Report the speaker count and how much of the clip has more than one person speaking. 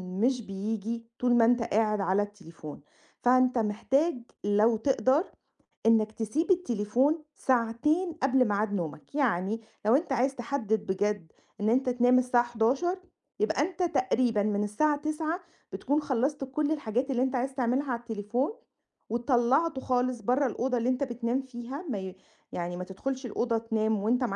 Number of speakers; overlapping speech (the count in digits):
1, no overlap